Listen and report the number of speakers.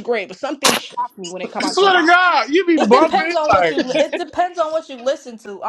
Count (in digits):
3